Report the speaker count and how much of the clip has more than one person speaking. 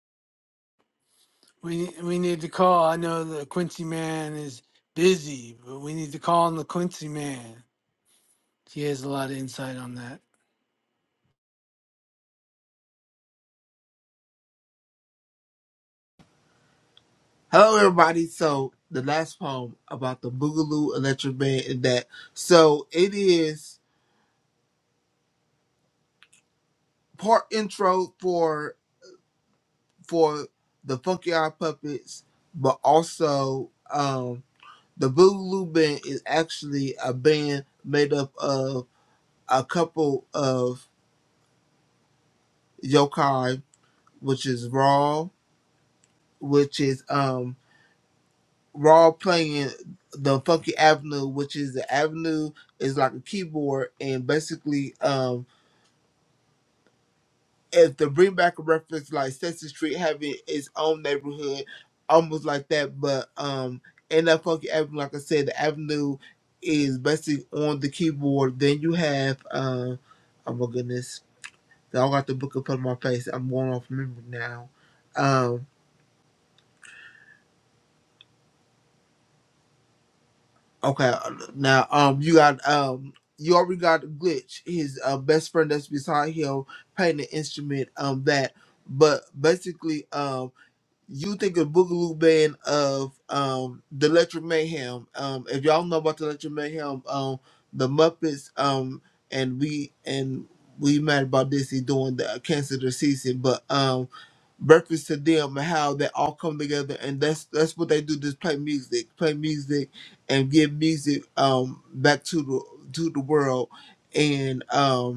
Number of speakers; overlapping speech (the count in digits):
2, no overlap